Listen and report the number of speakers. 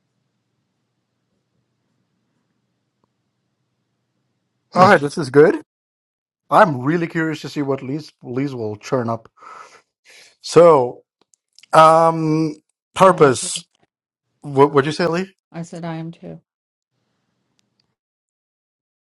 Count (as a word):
two